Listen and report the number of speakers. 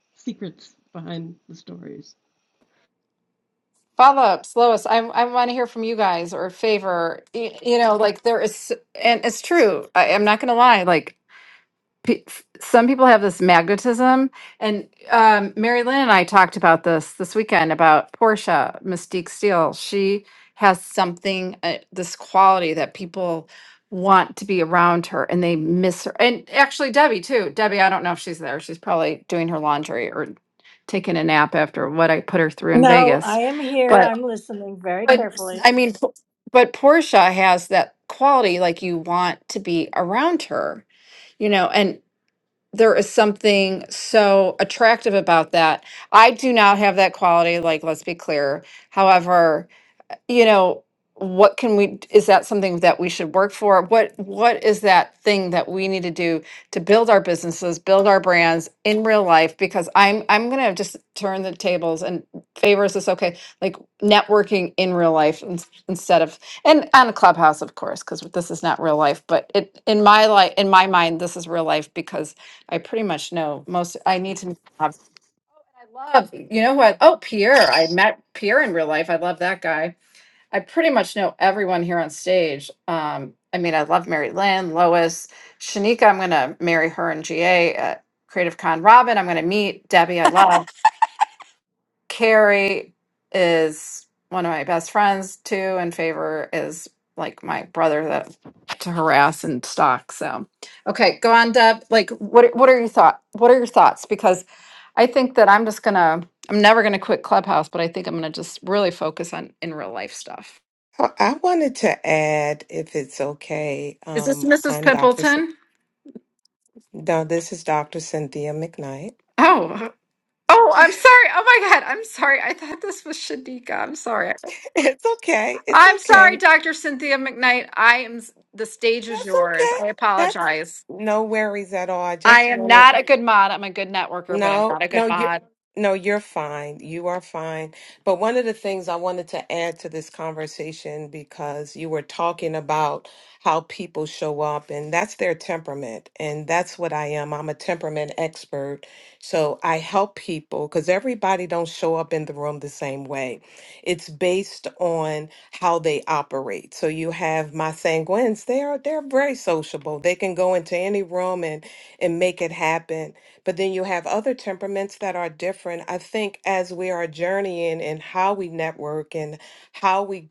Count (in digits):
4